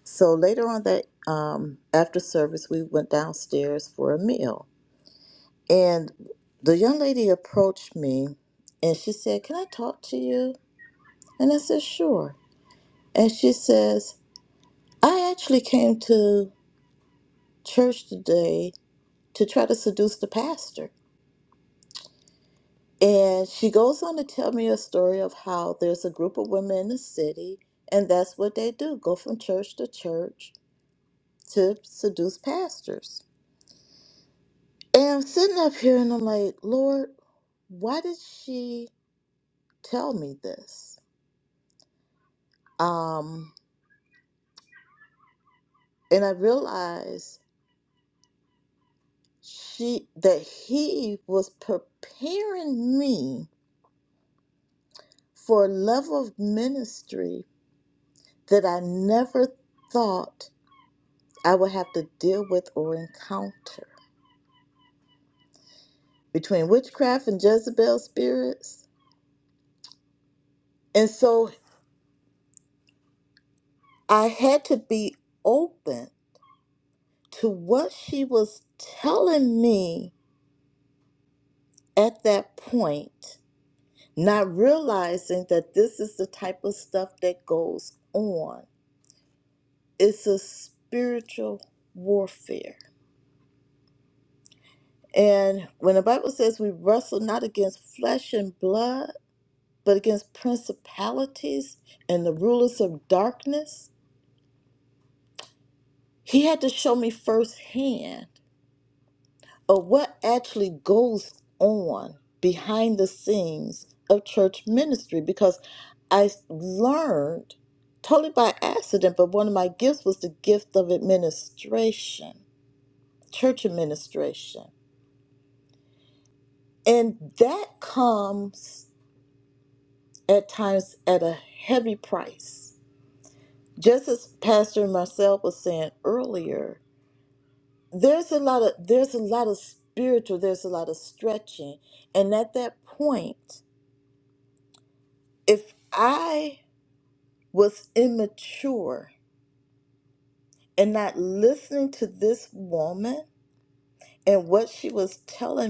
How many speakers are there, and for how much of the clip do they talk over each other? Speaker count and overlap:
1, no overlap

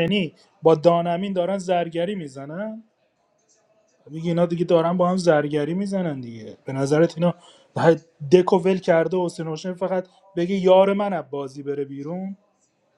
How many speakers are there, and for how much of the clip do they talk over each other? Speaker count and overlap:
1, no overlap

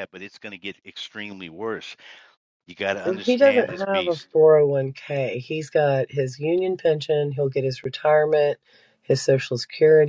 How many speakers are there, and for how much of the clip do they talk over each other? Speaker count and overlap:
2, about 12%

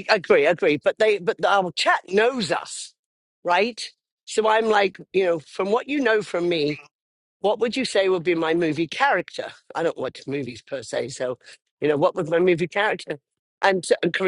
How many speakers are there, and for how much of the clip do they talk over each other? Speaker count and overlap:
1, no overlap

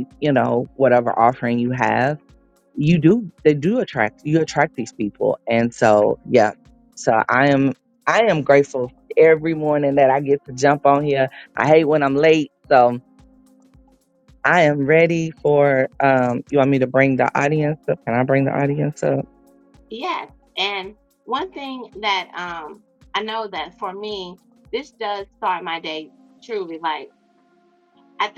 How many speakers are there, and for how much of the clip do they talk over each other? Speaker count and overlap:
2, no overlap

